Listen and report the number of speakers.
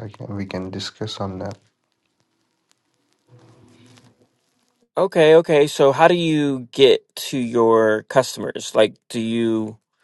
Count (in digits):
2